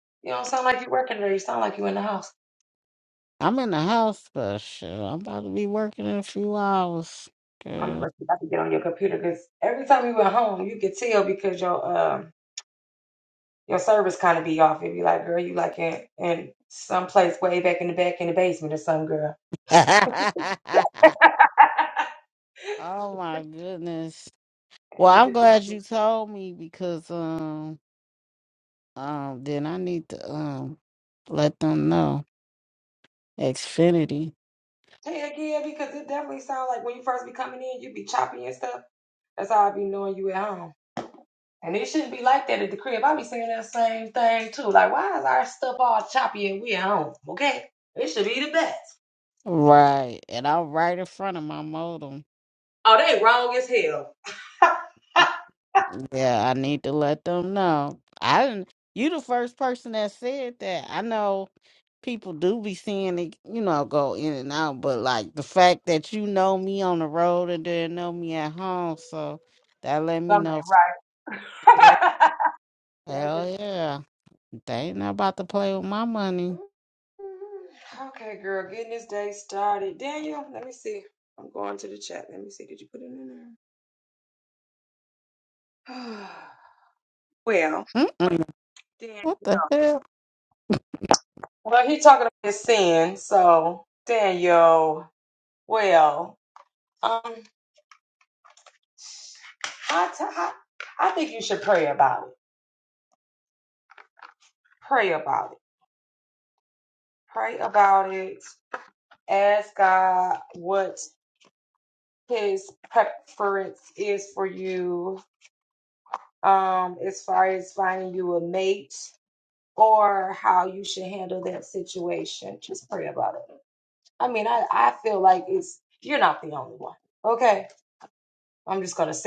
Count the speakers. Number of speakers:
2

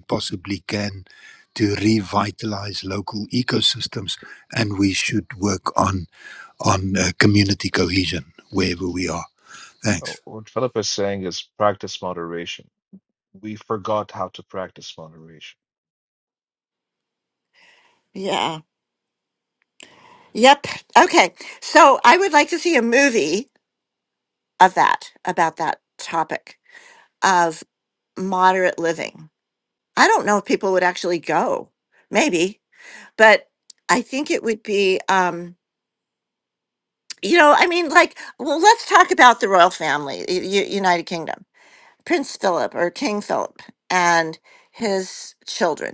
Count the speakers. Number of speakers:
3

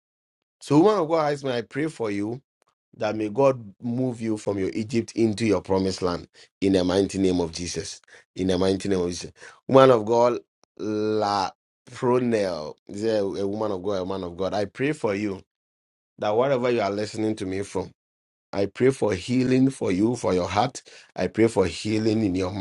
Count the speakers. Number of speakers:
1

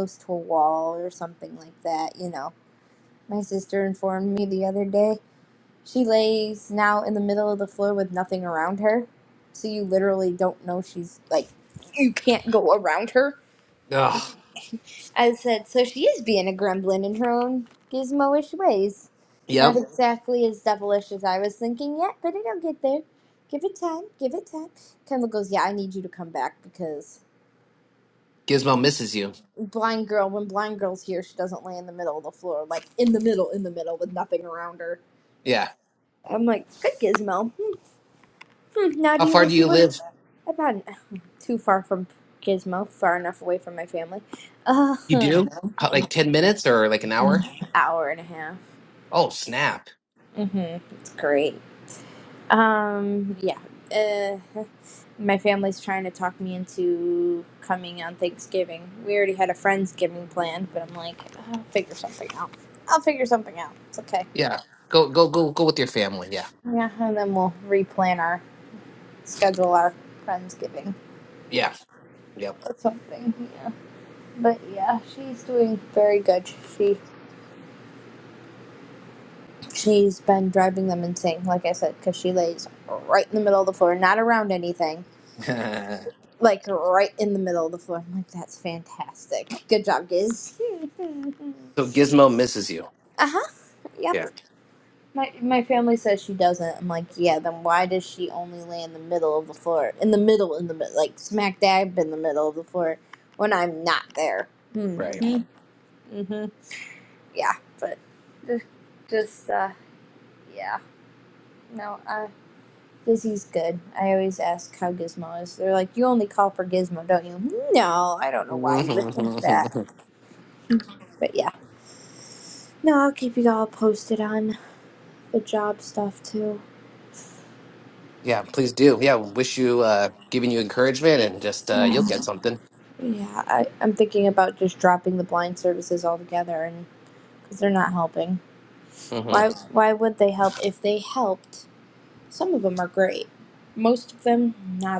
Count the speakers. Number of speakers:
2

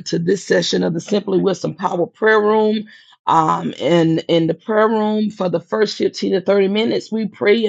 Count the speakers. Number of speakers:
1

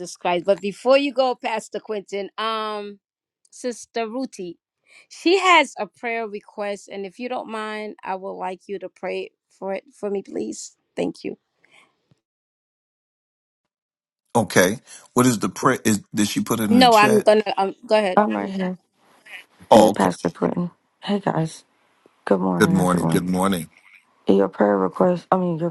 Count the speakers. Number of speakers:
3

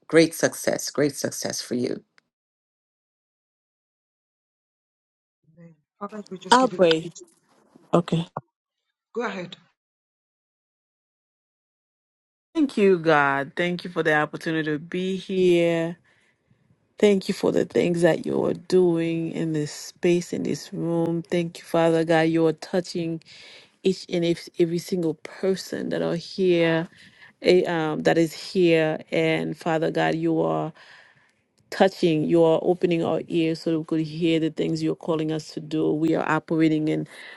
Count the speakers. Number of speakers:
3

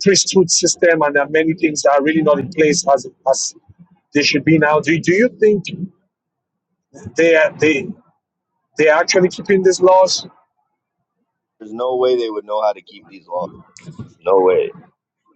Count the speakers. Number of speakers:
2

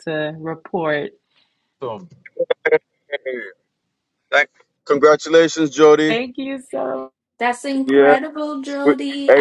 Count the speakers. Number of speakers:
3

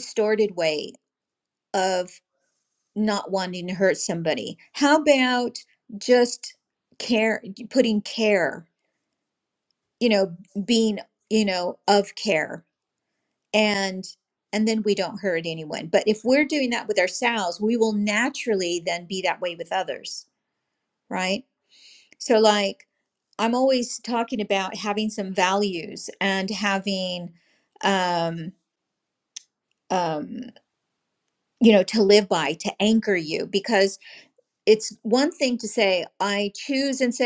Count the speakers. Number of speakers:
1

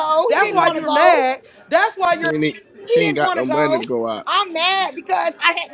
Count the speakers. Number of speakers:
3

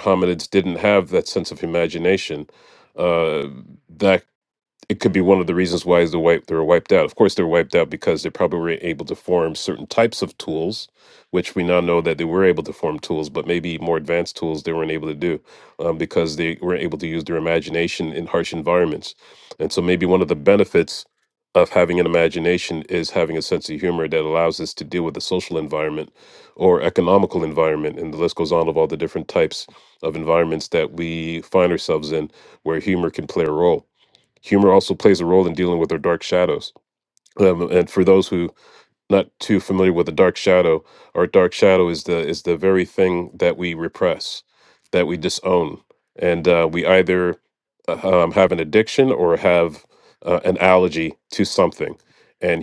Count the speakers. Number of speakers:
1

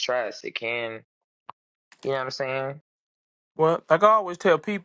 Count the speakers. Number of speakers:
2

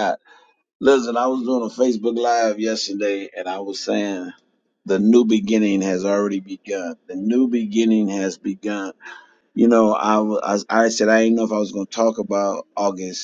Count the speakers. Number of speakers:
1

